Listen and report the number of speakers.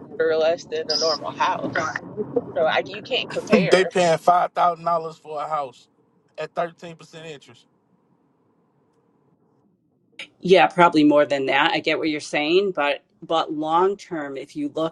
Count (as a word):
three